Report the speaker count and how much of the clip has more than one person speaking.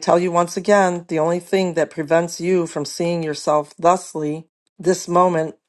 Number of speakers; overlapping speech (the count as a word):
one, no overlap